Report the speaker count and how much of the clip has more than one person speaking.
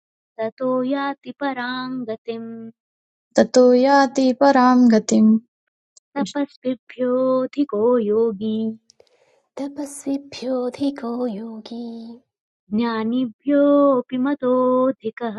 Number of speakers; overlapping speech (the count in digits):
3, no overlap